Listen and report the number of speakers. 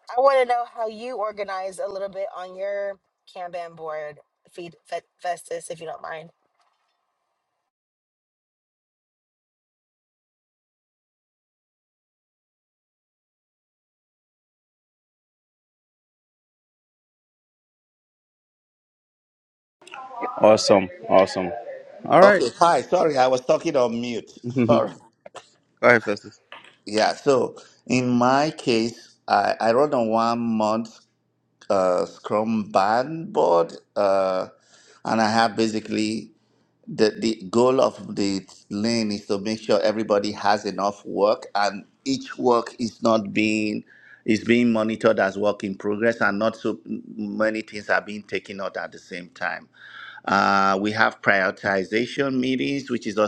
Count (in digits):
3